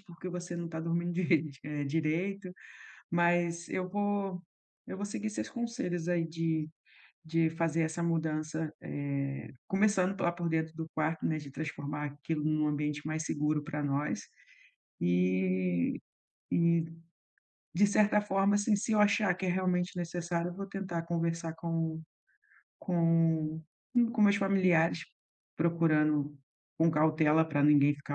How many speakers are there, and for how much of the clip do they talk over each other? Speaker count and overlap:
one, no overlap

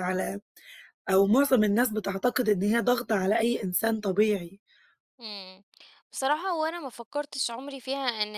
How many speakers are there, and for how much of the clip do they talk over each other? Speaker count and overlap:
two, no overlap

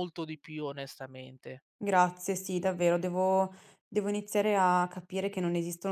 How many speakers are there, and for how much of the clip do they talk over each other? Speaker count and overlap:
two, no overlap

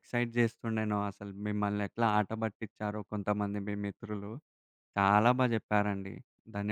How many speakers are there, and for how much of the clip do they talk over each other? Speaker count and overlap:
one, no overlap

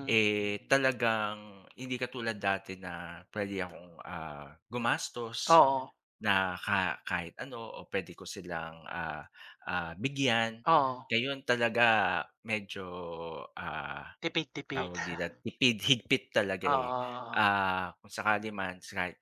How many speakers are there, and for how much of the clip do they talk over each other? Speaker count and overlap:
two, about 4%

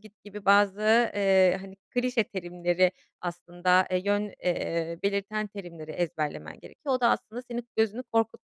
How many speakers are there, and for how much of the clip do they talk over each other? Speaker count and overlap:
one, no overlap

